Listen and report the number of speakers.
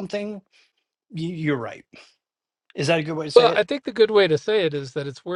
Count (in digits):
2